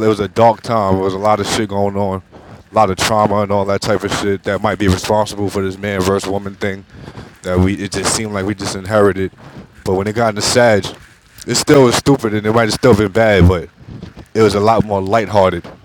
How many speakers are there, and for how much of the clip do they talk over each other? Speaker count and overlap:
one, no overlap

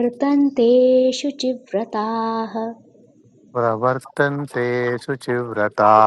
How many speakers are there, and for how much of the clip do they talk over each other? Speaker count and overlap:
two, no overlap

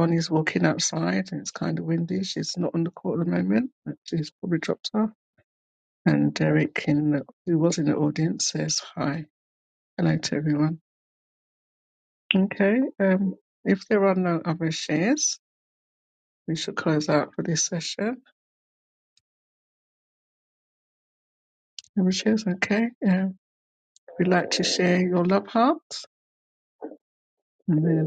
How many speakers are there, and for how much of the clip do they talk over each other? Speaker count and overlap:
one, no overlap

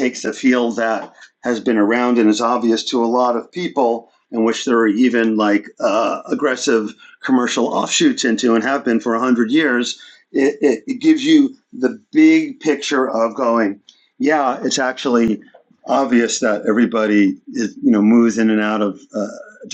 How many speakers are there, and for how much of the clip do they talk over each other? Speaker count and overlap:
one, no overlap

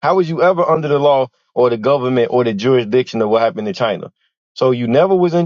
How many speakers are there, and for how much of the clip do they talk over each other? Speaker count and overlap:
one, no overlap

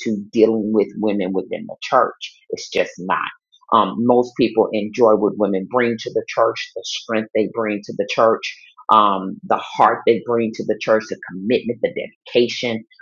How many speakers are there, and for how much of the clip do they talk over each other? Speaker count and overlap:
one, no overlap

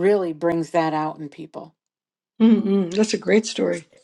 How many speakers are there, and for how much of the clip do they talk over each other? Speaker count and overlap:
two, no overlap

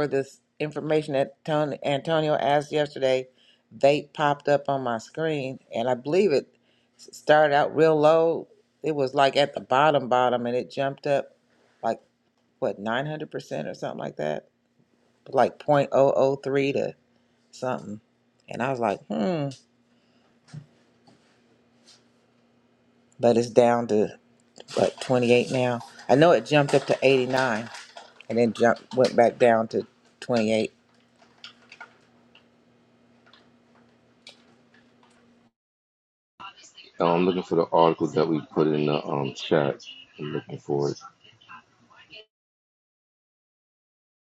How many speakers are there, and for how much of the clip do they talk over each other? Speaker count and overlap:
two, no overlap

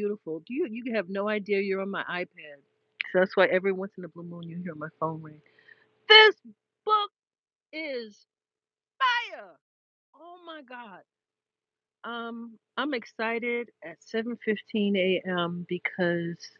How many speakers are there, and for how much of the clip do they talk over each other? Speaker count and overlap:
one, no overlap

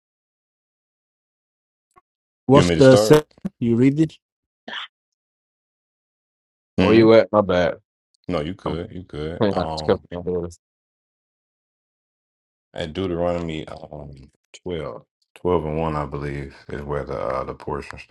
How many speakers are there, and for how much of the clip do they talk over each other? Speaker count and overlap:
three, about 9%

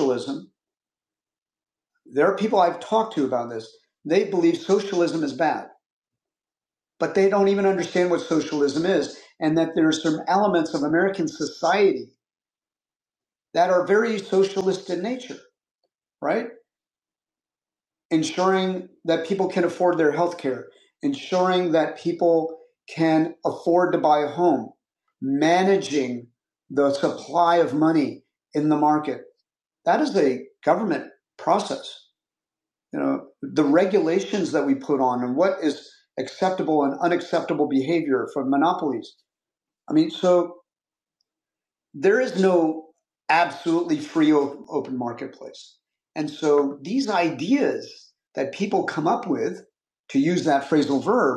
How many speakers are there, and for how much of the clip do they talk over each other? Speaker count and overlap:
one, no overlap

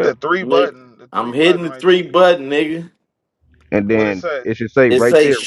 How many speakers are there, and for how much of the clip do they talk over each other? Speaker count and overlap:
three, about 45%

